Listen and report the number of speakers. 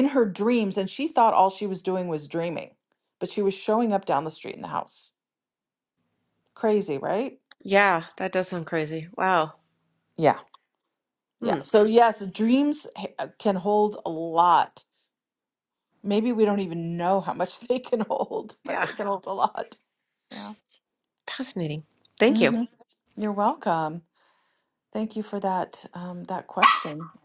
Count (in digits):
2